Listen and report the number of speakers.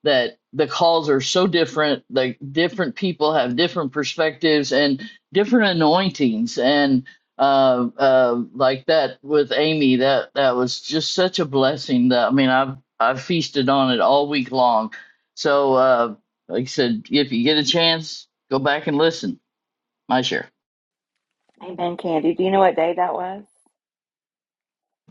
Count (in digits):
2